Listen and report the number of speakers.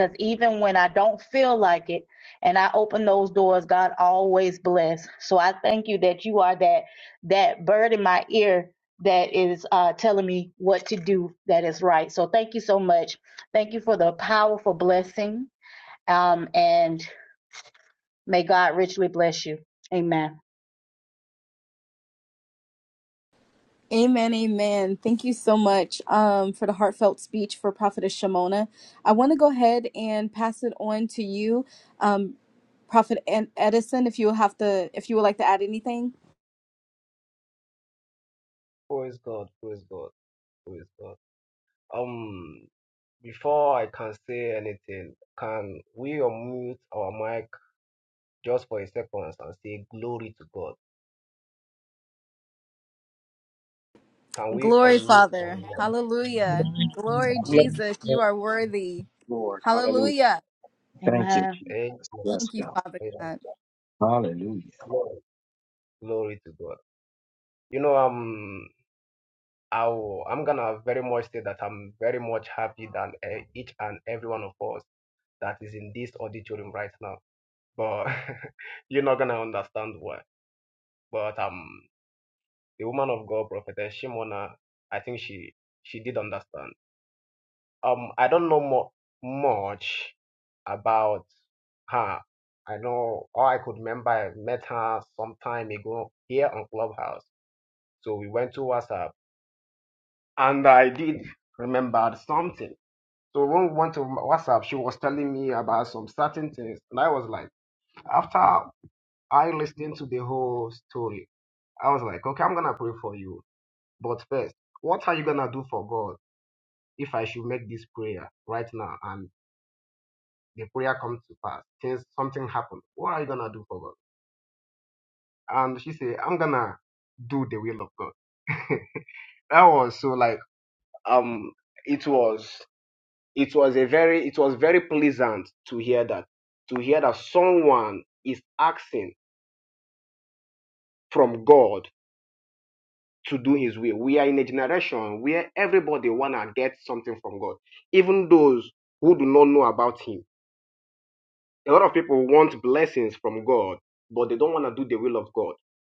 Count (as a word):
four